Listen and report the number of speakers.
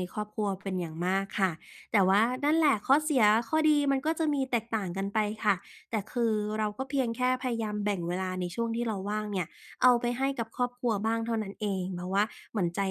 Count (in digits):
1